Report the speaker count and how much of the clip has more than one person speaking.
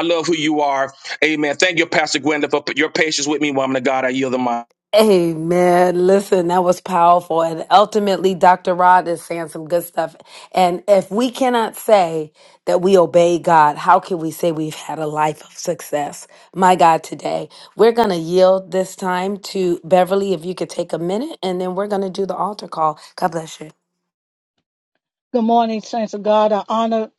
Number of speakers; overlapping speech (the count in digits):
3, no overlap